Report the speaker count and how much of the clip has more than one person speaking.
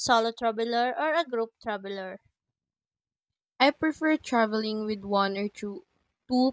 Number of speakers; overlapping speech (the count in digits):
2, no overlap